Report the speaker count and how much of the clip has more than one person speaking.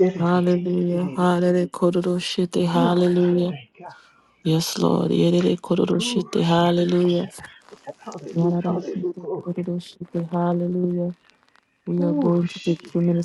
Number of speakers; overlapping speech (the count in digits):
2, about 34%